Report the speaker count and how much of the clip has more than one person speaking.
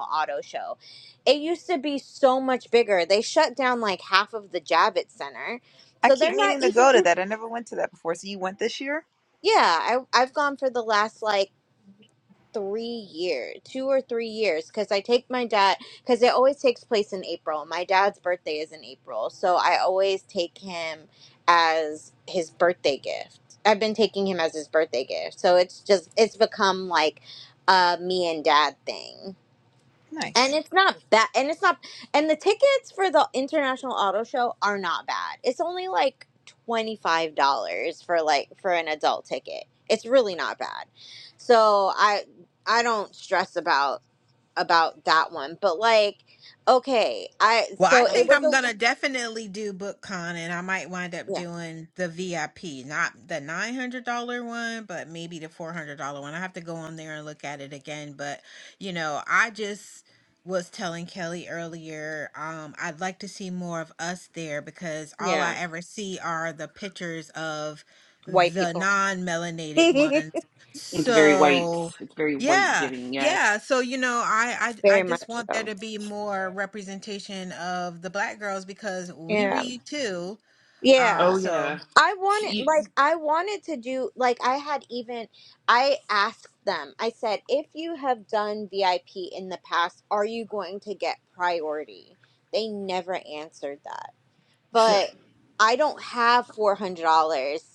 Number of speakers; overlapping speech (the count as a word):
four, about 8%